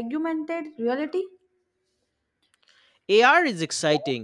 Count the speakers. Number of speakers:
two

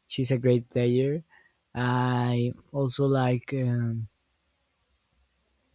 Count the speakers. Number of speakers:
one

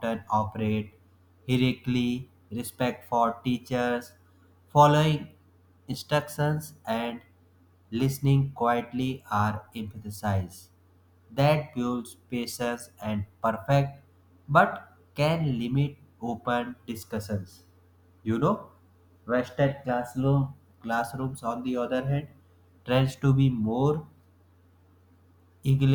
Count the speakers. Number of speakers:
one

